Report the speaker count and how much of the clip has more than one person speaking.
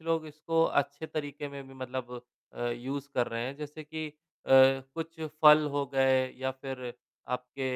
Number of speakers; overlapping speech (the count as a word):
one, no overlap